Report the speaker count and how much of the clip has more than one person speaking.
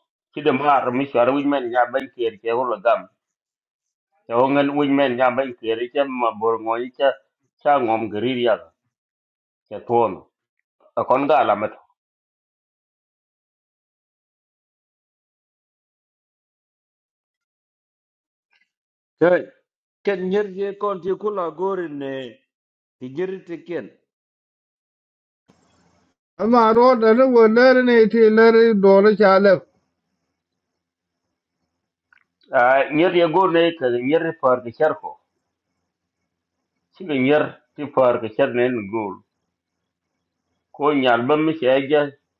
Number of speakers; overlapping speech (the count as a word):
three, no overlap